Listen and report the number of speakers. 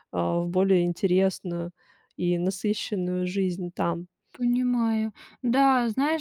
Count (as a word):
two